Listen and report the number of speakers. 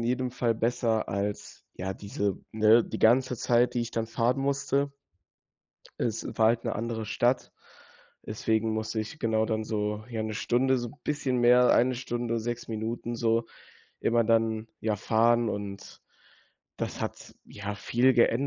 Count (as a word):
one